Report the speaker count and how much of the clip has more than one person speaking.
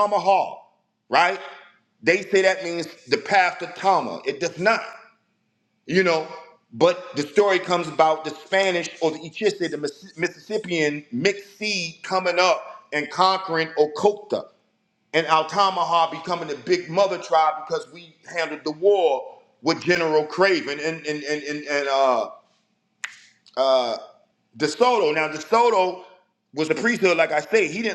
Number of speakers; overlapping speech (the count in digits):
1, no overlap